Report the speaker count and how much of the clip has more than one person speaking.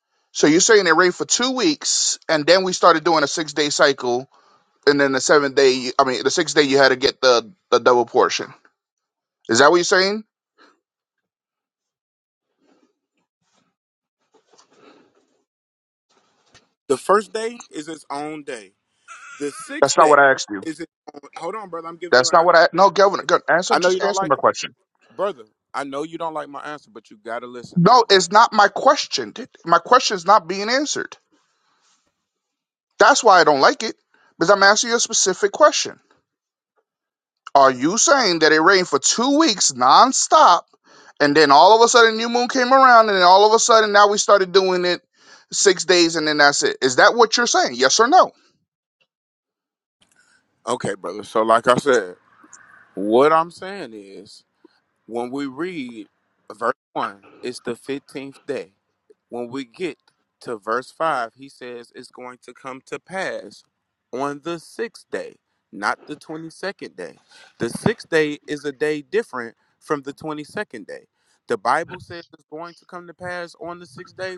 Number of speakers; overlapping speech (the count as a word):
two, about 2%